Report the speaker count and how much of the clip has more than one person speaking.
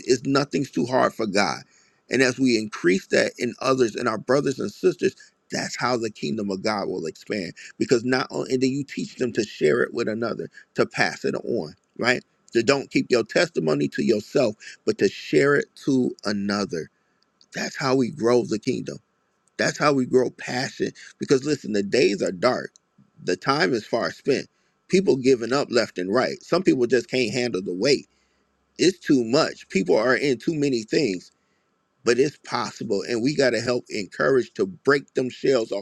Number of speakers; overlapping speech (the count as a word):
one, no overlap